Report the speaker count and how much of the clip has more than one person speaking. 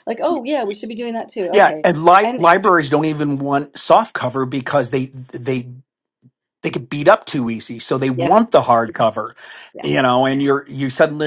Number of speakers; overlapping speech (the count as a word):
two, about 7%